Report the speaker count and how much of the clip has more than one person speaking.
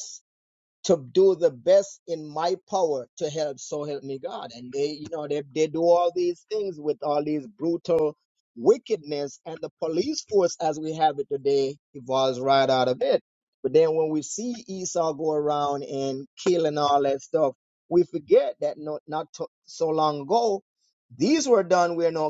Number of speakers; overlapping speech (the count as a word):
one, no overlap